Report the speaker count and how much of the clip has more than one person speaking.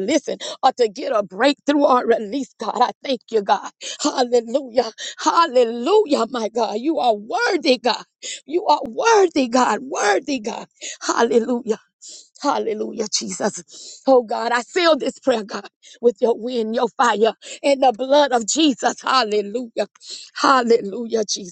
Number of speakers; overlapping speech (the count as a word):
one, no overlap